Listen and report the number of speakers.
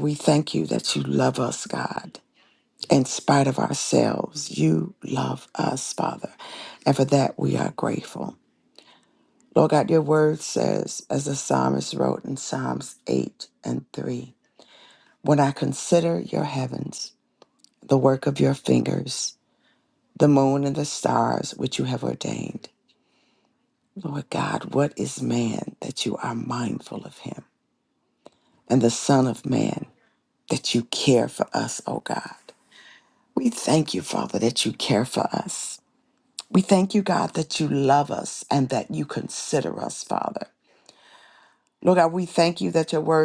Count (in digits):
1